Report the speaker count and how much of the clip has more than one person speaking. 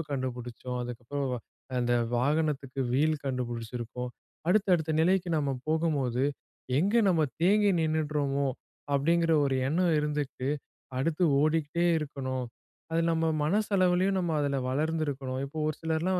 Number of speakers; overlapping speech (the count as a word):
one, no overlap